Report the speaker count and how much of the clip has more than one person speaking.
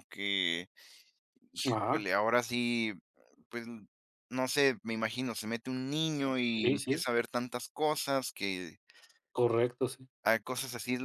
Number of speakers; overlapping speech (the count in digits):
2, about 7%